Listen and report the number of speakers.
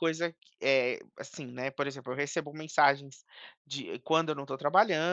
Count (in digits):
1